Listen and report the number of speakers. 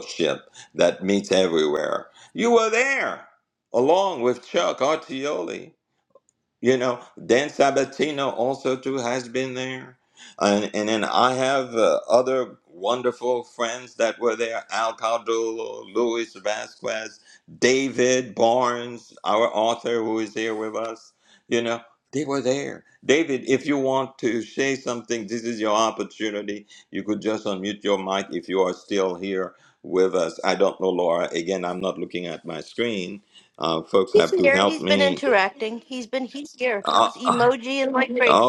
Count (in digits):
2